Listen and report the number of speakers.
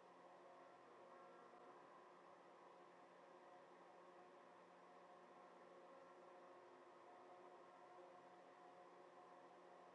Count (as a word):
zero